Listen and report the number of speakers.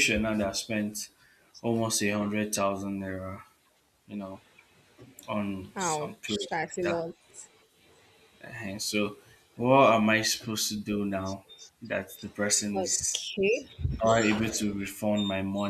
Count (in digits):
2